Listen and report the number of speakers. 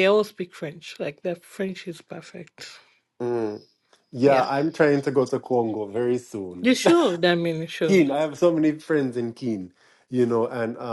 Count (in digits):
2